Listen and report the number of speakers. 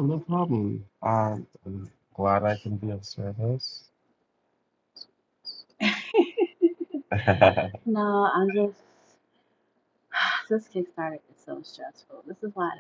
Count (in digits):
2